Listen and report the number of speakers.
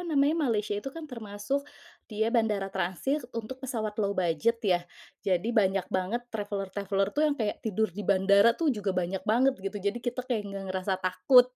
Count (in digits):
1